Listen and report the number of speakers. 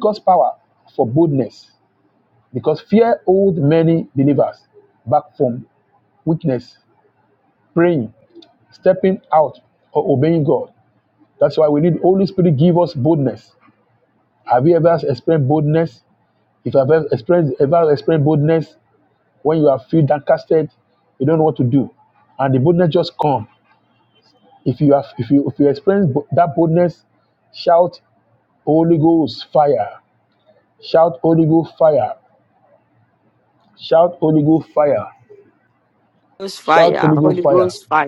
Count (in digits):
2